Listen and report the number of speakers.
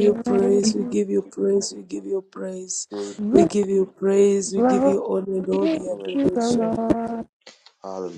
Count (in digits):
3